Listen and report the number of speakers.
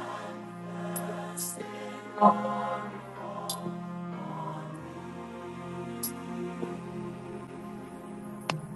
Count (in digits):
0